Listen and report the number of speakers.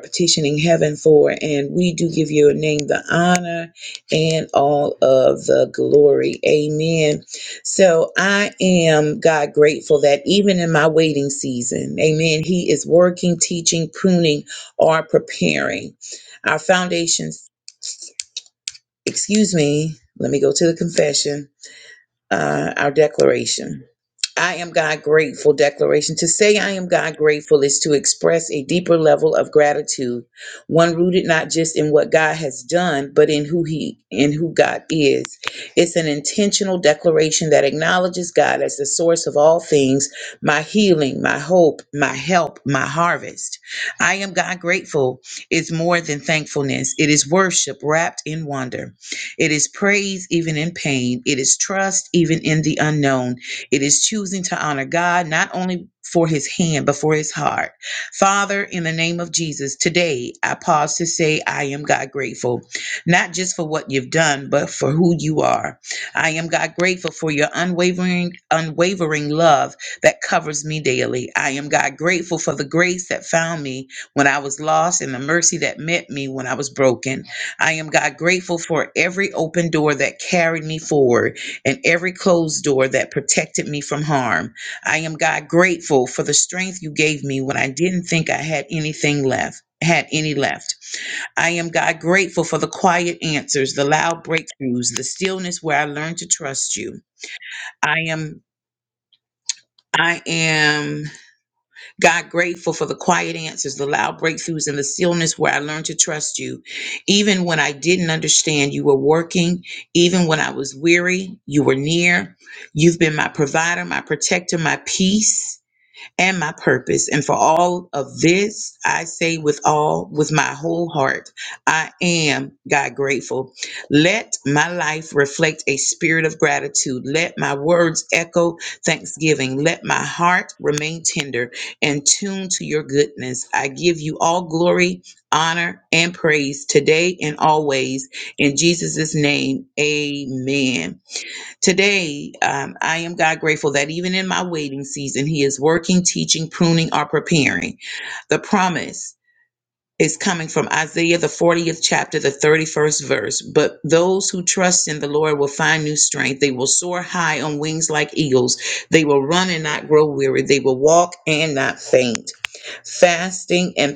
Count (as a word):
one